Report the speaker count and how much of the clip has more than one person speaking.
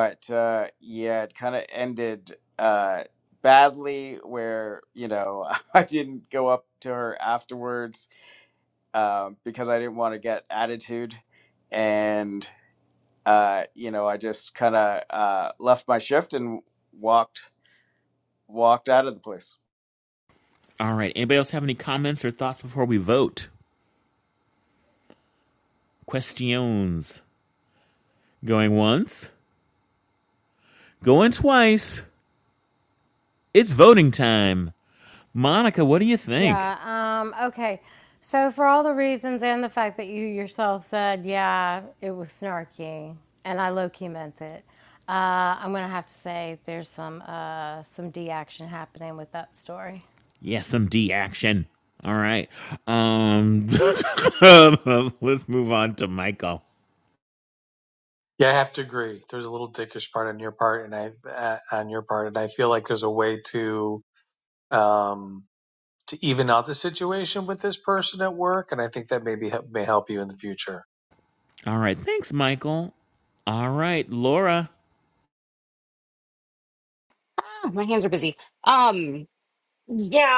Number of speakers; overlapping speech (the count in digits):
5, under 1%